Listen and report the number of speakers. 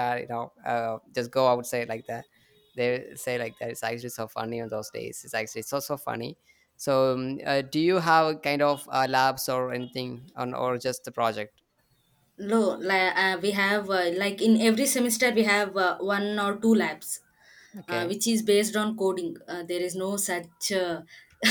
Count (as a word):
two